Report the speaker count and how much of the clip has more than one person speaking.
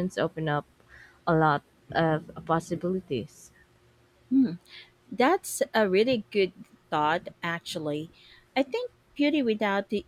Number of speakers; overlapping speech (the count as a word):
two, no overlap